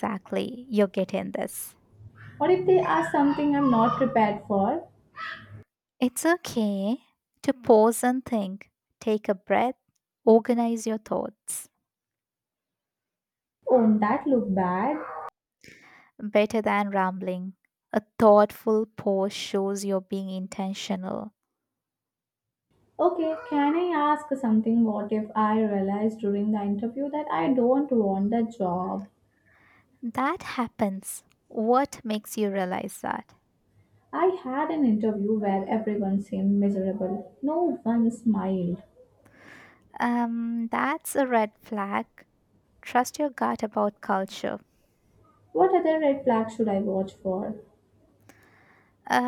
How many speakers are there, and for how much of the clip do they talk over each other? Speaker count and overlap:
2, no overlap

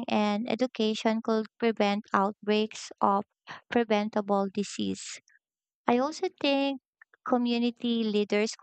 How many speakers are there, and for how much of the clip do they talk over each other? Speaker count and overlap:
1, no overlap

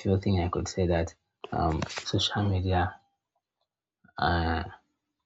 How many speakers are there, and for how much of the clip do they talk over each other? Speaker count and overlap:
1, no overlap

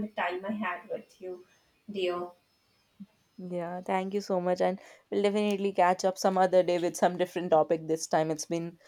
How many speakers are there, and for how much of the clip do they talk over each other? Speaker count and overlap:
2, no overlap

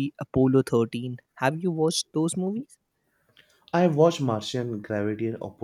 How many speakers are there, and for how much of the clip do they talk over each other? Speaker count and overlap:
2, no overlap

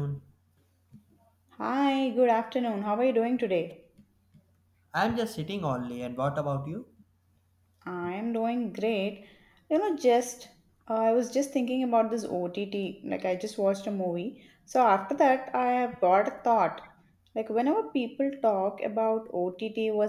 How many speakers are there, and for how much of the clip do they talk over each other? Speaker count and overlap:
2, no overlap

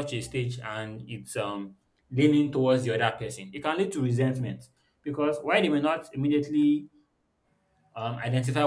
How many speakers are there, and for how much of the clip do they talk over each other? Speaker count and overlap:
1, no overlap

